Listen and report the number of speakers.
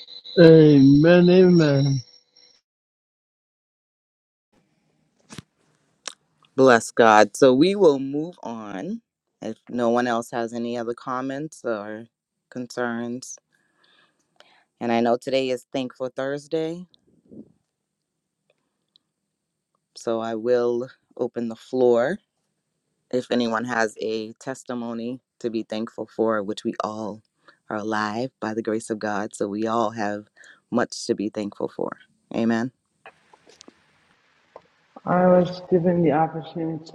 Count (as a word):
three